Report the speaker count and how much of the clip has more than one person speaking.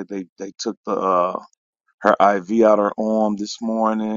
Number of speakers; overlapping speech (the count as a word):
one, no overlap